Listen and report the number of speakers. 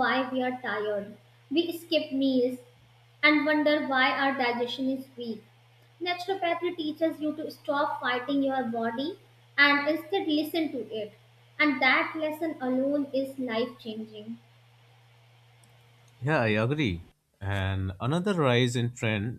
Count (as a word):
two